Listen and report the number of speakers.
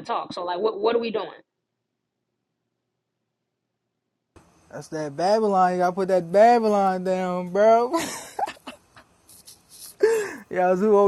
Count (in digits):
2